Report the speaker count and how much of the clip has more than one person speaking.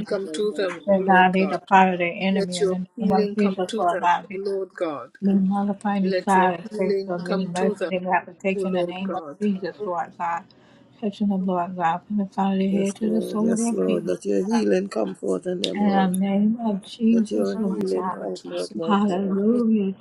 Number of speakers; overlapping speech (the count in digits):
3, about 49%